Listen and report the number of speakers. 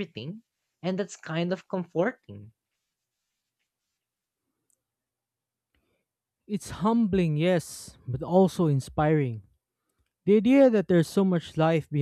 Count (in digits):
2